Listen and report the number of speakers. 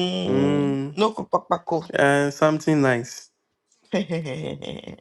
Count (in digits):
2